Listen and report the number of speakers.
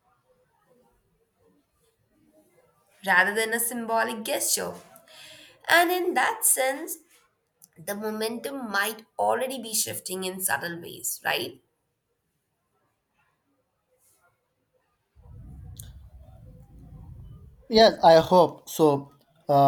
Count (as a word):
two